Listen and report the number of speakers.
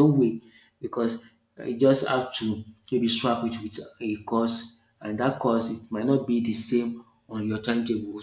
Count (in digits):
1